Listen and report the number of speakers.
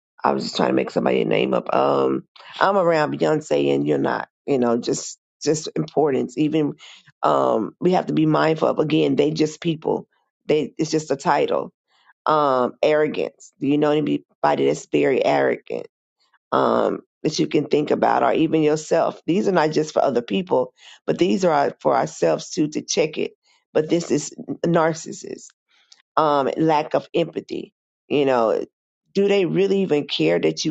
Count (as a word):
one